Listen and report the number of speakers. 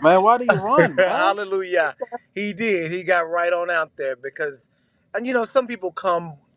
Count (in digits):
2